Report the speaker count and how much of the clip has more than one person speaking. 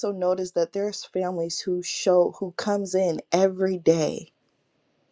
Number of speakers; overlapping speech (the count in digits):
1, no overlap